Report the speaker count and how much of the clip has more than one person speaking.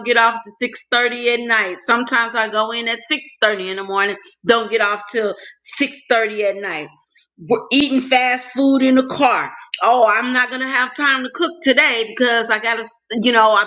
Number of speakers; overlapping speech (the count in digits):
1, no overlap